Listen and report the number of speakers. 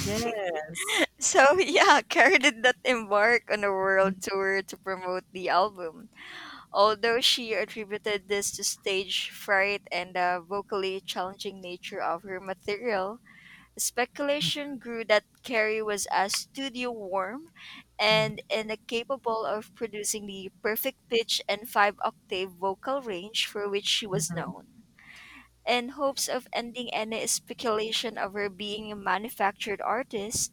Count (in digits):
2